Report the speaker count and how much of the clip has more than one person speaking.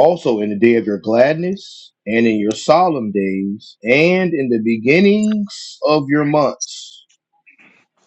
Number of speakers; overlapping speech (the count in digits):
1, no overlap